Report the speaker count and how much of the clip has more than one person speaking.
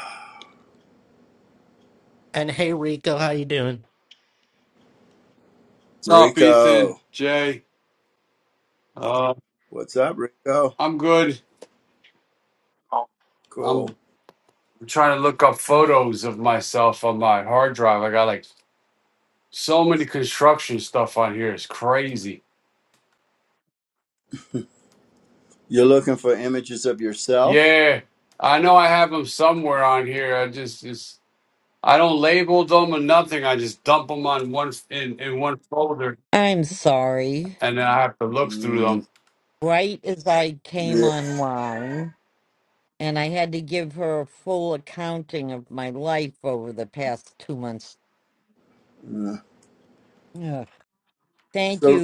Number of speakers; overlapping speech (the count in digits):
4, about 5%